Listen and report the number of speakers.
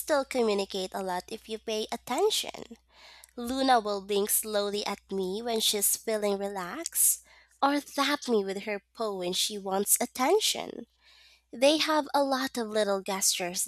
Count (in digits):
1